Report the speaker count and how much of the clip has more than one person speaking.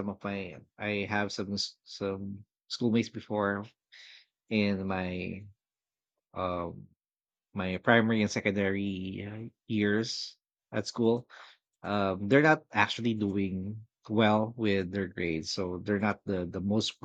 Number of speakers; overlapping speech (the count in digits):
1, no overlap